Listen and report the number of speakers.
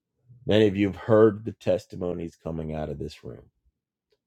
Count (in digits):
1